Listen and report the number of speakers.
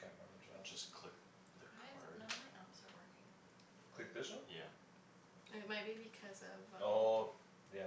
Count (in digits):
4